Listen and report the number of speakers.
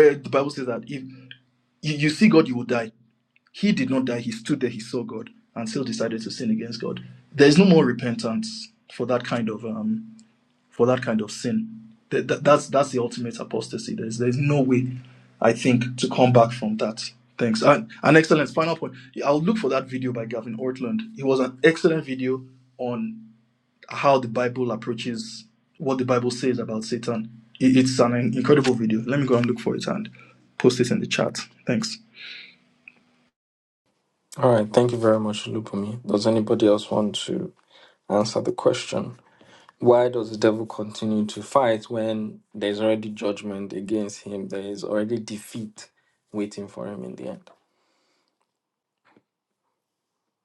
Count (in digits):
2